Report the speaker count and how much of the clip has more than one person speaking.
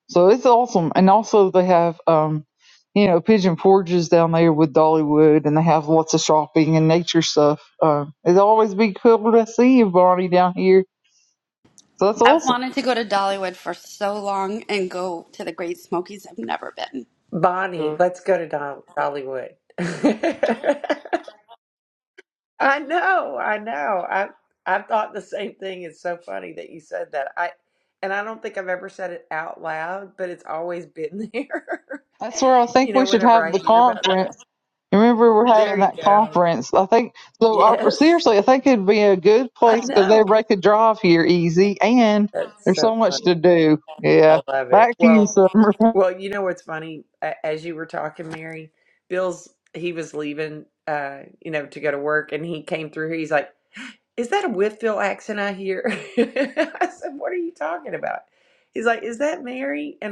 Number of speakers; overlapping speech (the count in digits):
3, about 10%